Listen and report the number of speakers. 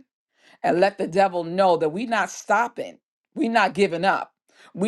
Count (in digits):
1